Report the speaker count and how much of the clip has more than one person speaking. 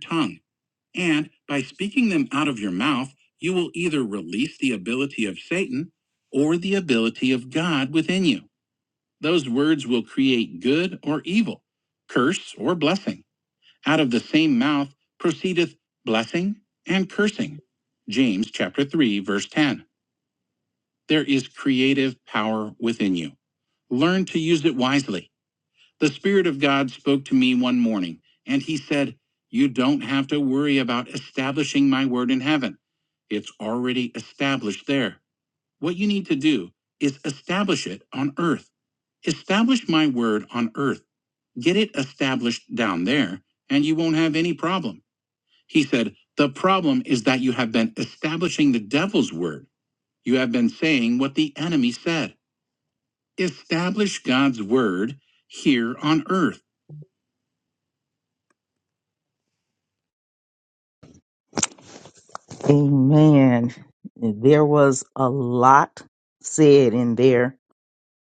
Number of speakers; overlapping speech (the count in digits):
2, no overlap